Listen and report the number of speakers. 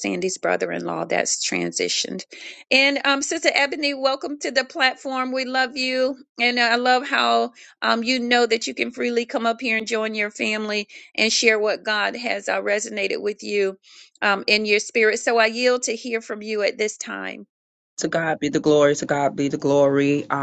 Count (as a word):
two